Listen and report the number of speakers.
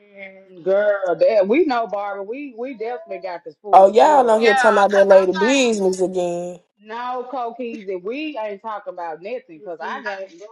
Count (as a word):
three